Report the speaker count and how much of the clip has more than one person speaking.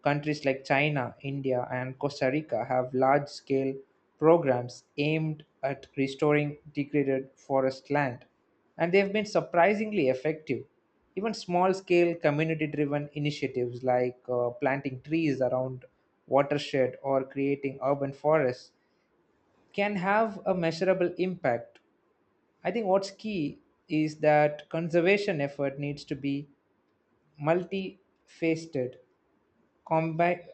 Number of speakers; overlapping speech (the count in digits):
1, no overlap